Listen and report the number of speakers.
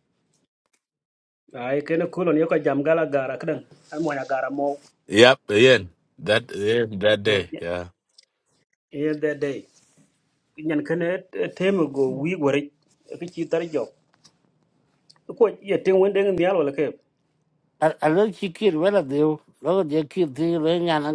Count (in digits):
3